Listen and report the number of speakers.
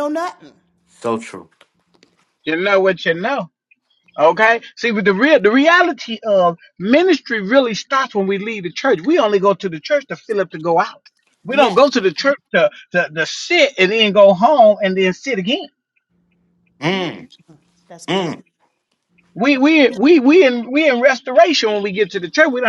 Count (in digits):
3